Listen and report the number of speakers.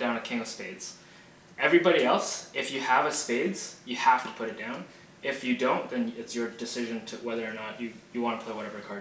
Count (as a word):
one